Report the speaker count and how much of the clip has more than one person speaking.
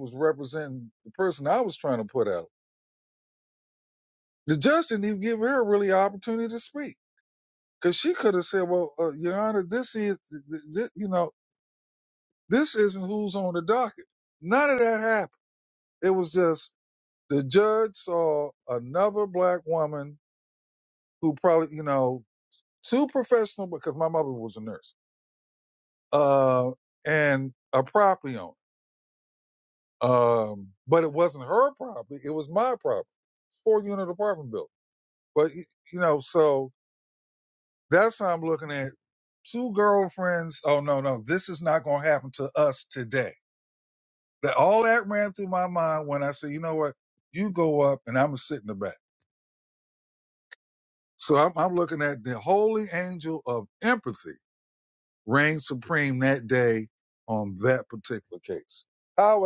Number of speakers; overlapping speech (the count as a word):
one, no overlap